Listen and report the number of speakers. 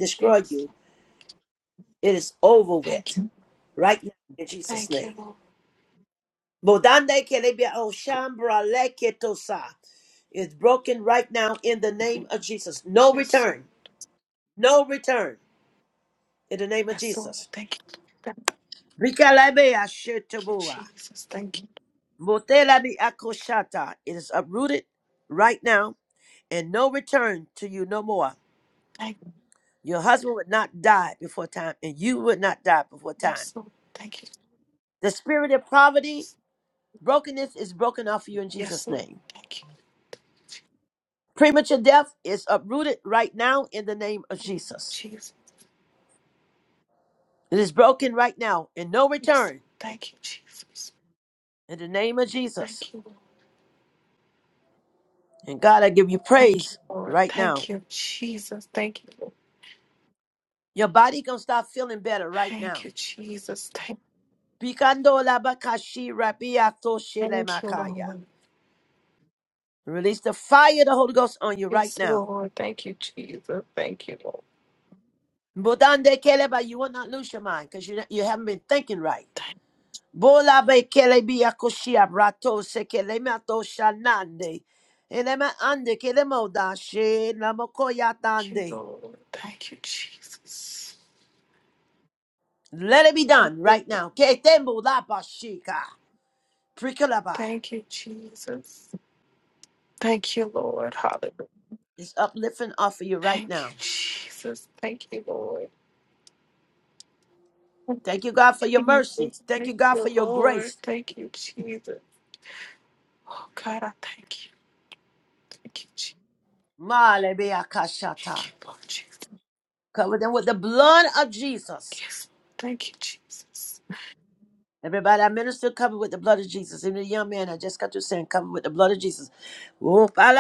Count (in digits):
2